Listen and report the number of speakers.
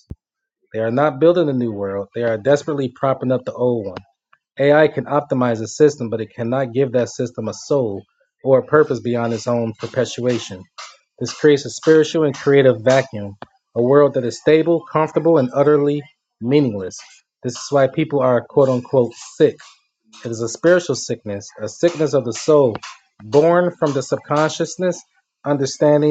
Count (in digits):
1